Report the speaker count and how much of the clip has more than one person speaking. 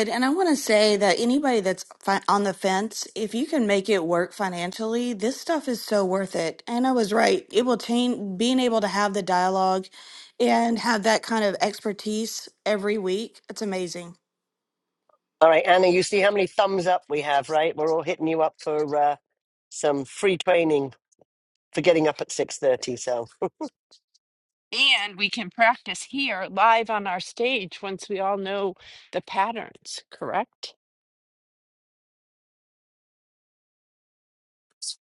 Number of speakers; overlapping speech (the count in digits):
3, no overlap